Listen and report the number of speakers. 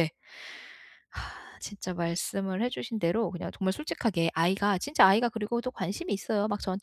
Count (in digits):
1